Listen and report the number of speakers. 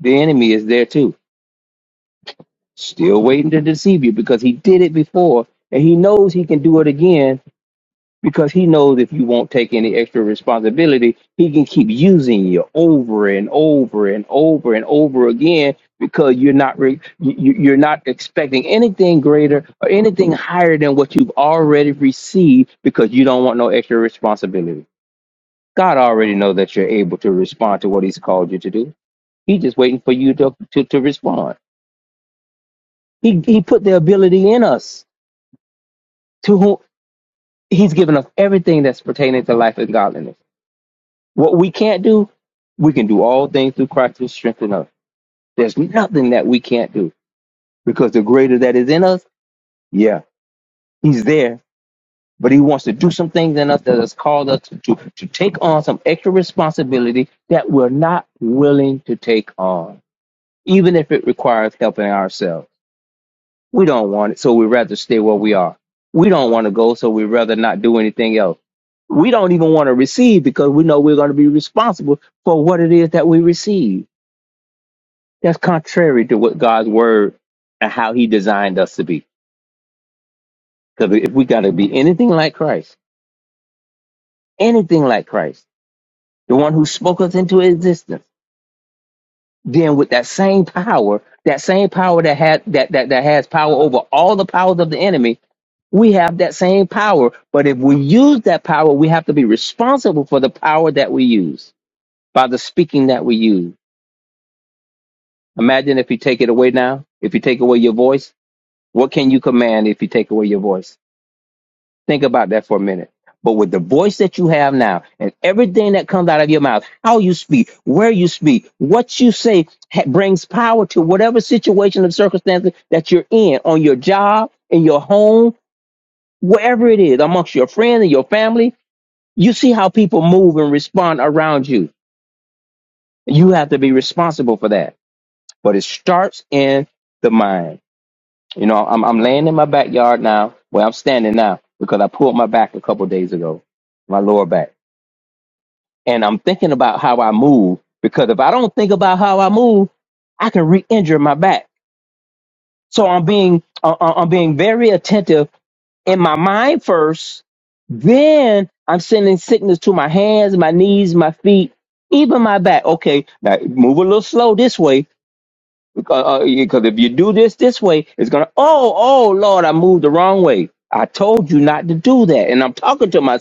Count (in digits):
1